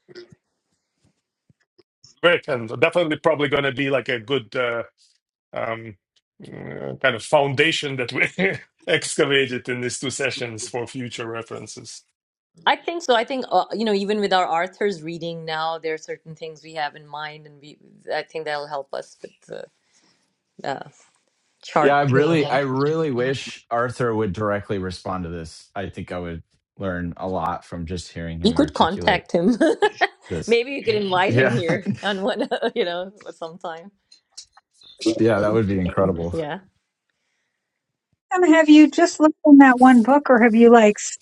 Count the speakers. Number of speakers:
4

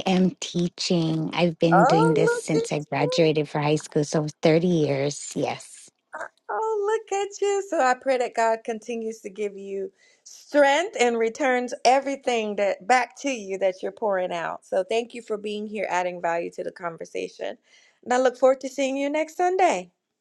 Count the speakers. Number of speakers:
2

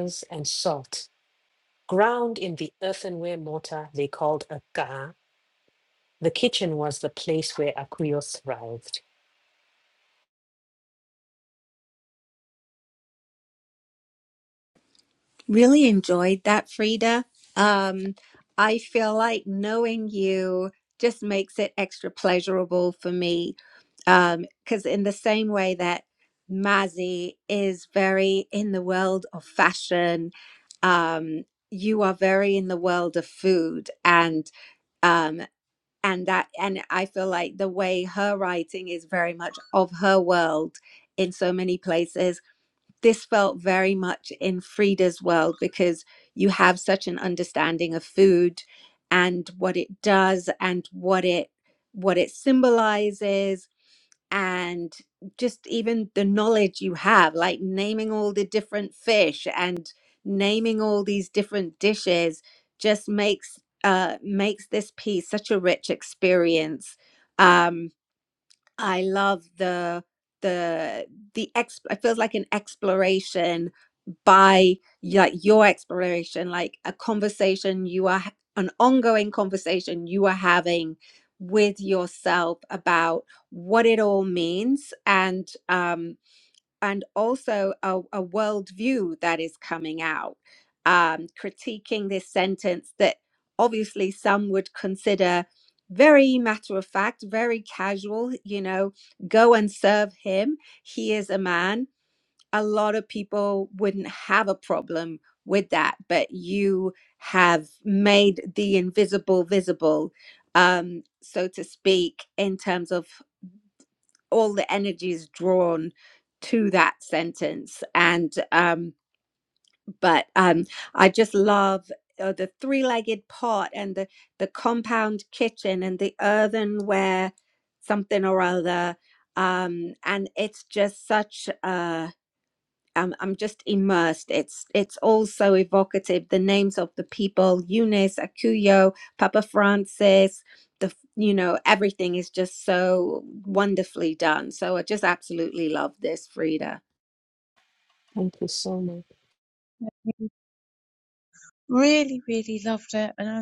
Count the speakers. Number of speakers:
3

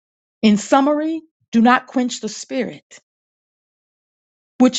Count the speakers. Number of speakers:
1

